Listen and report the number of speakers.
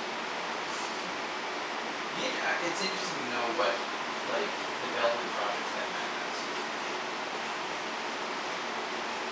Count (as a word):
one